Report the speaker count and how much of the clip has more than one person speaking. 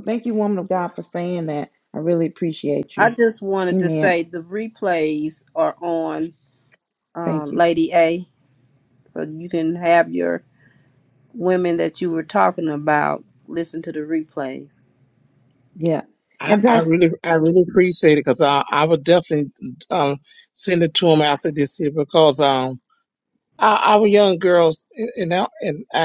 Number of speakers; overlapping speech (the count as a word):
three, about 5%